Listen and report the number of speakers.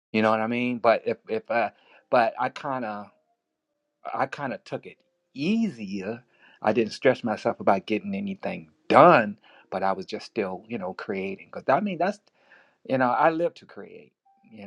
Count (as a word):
one